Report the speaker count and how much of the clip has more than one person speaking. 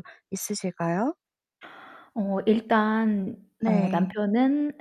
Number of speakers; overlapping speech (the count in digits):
2, about 9%